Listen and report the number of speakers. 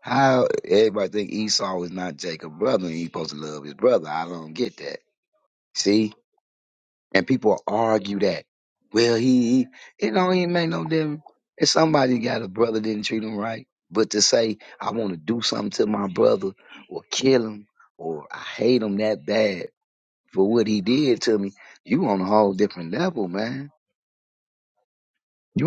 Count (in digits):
1